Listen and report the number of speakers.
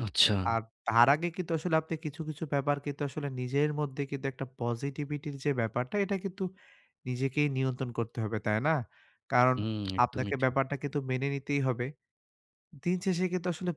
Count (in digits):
2